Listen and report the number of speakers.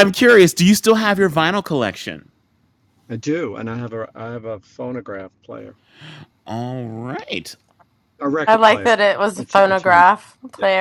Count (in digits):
3